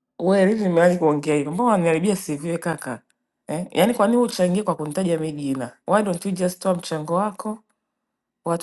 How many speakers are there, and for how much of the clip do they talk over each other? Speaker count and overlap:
1, no overlap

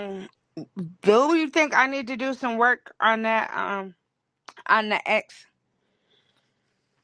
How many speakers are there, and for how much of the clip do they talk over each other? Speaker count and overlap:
1, no overlap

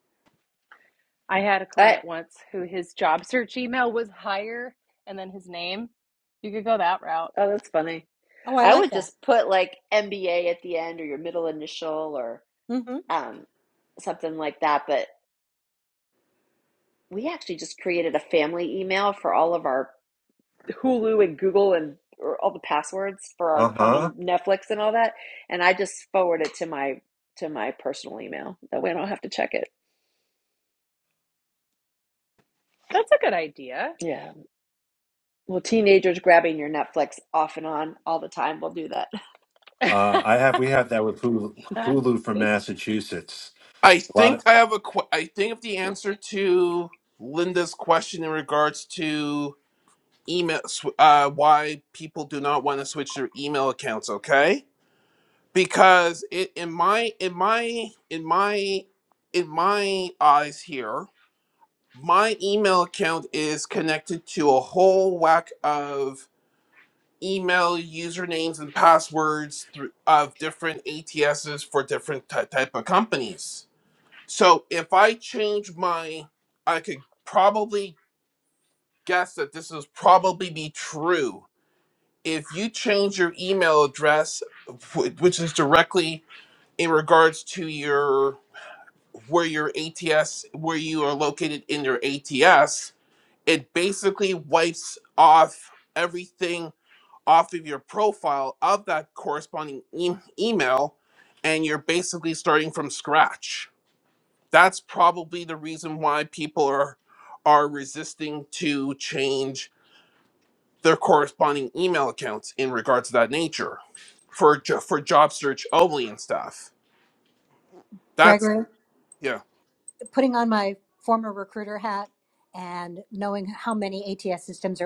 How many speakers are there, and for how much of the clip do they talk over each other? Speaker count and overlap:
5, about 2%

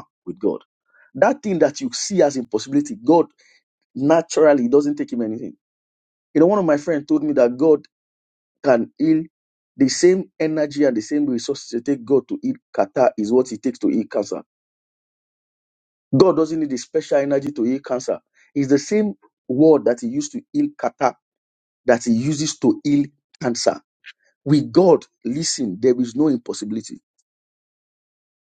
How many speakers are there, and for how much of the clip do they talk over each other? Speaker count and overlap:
1, no overlap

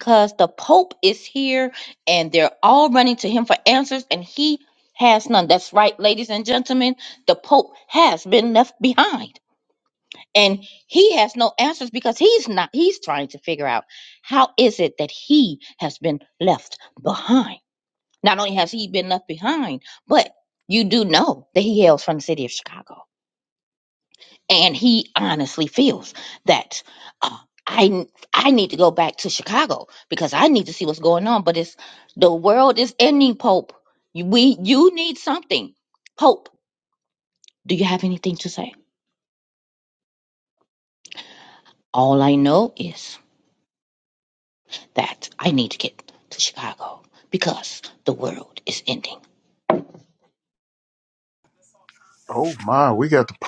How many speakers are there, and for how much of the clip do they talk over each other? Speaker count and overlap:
2, no overlap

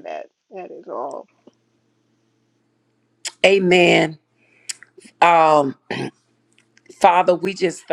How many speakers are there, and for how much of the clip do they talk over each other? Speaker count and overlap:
2, no overlap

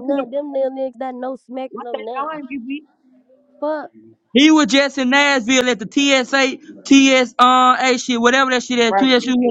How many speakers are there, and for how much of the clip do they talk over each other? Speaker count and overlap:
3, about 15%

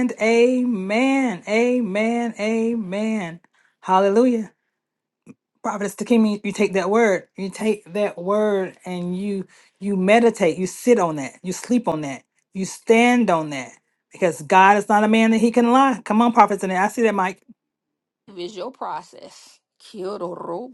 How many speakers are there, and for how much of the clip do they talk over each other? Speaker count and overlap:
2, no overlap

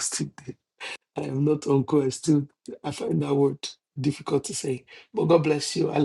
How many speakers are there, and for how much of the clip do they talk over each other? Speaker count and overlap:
1, no overlap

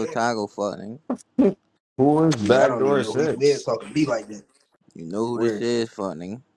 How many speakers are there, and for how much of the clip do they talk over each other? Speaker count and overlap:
3, about 25%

